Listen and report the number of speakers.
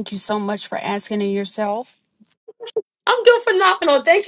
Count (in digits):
2